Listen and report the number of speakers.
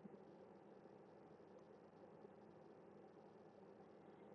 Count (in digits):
0